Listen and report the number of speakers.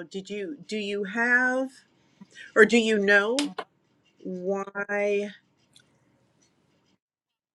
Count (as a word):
one